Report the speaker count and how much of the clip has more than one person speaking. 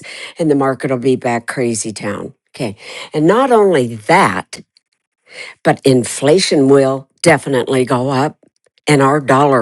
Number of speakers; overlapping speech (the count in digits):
1, no overlap